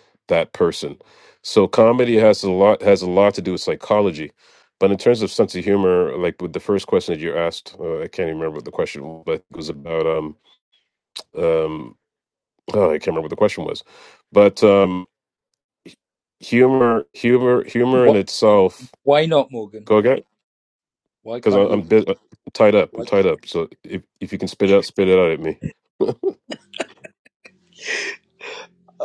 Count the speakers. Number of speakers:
two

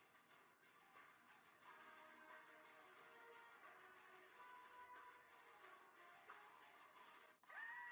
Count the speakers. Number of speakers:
zero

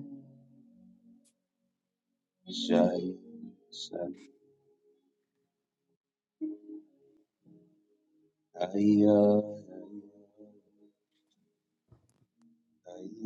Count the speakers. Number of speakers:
one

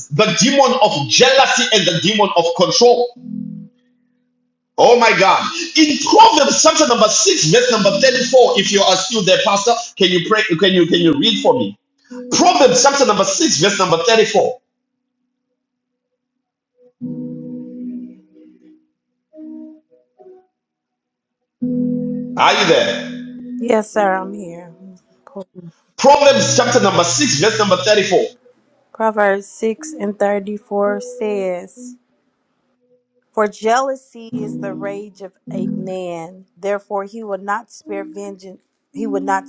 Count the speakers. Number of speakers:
two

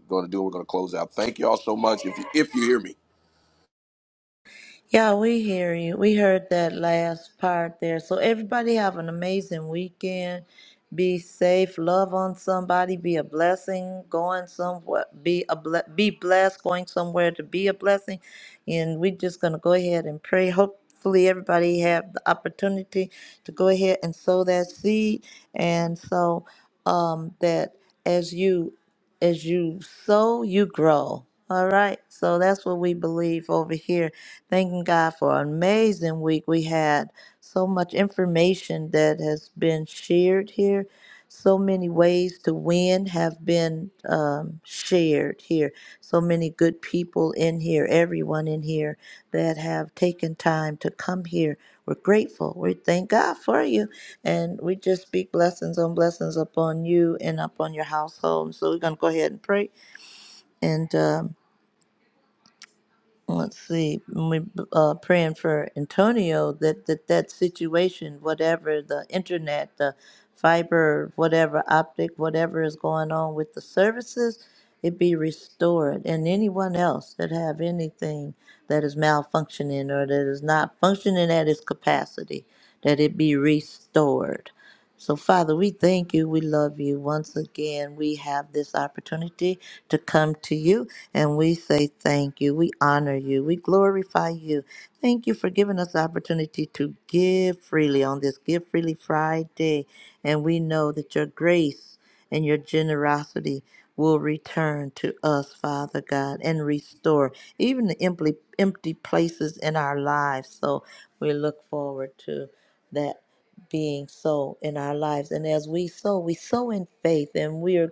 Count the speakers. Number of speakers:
two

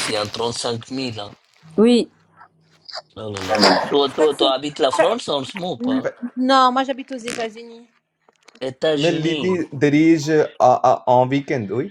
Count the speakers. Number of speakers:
three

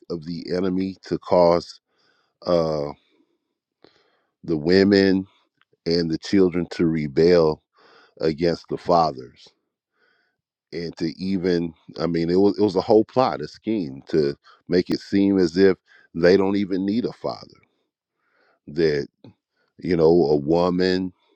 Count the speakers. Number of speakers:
one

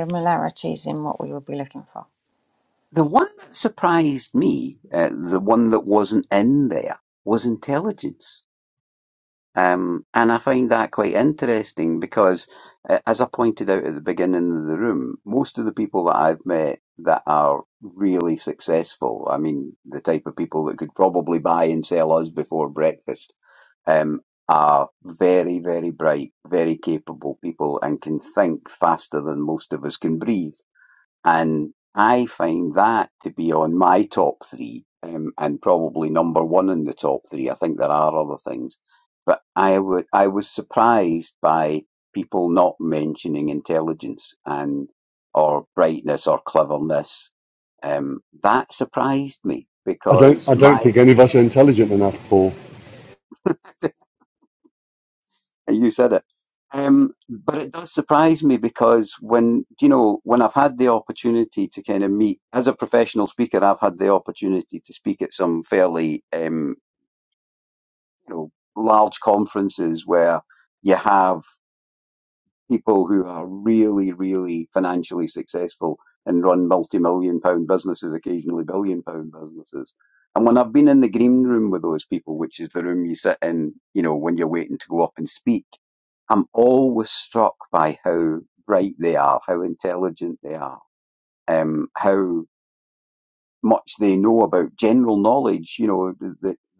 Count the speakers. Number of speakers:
three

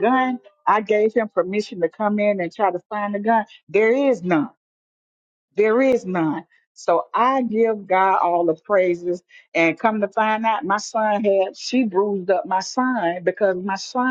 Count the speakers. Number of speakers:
one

